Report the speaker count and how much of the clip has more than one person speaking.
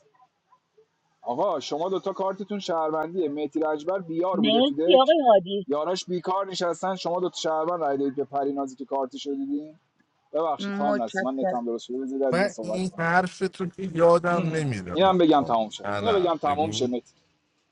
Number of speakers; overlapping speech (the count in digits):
3, about 20%